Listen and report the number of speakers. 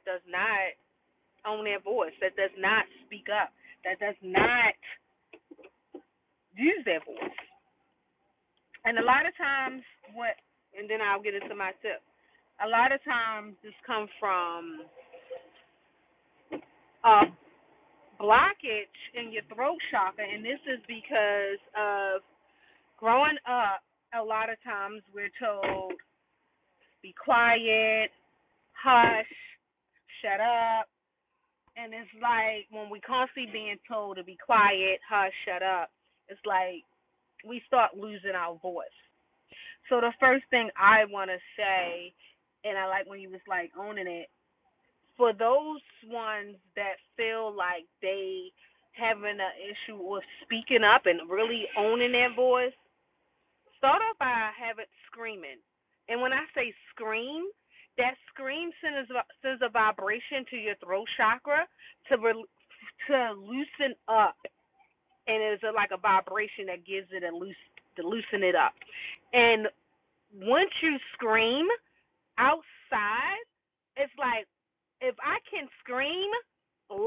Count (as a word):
one